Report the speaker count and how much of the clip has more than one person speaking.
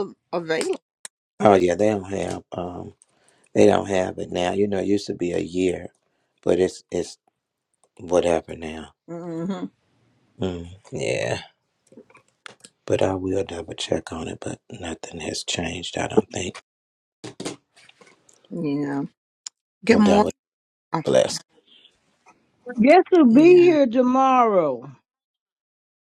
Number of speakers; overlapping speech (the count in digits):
3, about 3%